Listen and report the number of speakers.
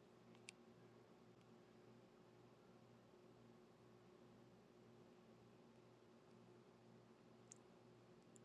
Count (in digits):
0